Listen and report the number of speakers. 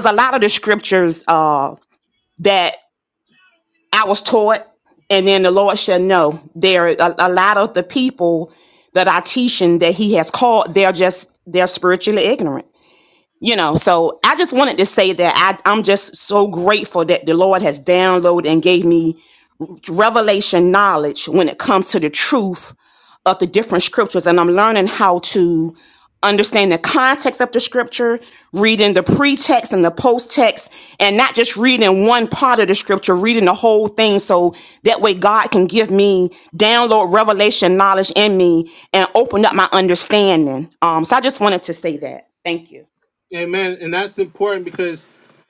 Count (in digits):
2